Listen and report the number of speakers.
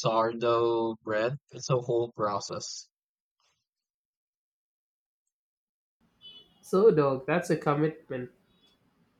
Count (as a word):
two